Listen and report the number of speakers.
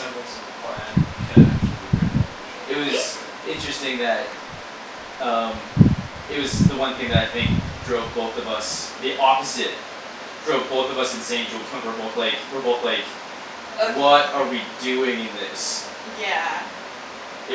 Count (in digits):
3